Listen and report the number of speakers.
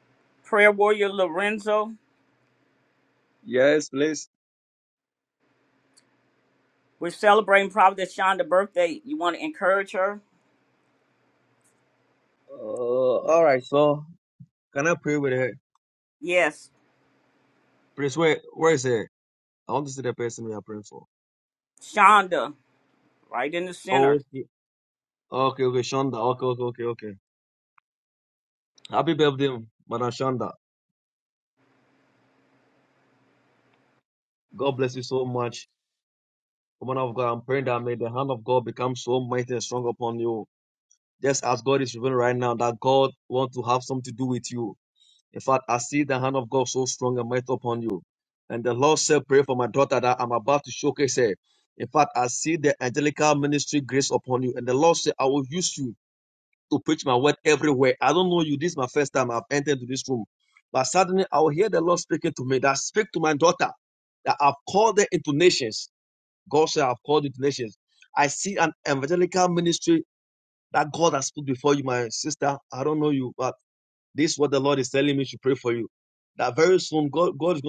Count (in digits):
2